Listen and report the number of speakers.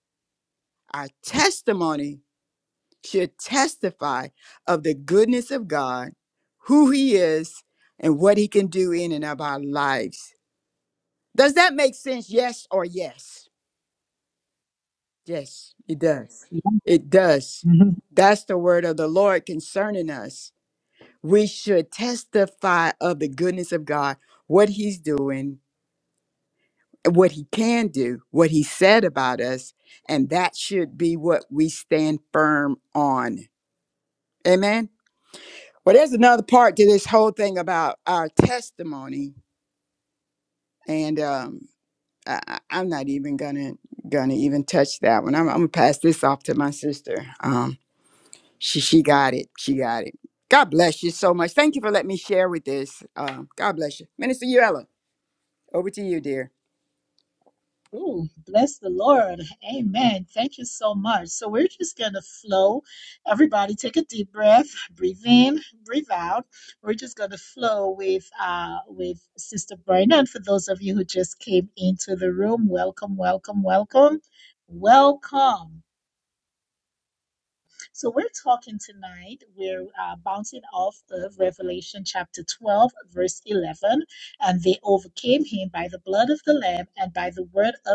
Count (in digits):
2